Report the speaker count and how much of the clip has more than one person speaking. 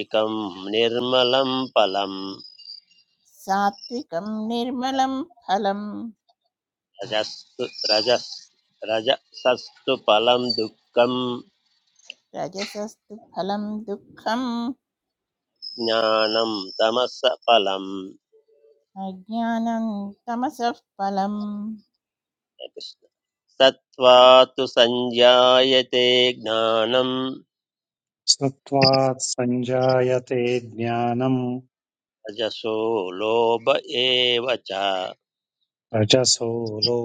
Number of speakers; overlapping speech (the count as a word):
three, no overlap